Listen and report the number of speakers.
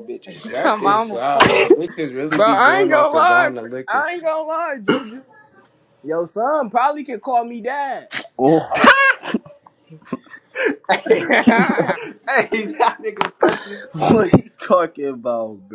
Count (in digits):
4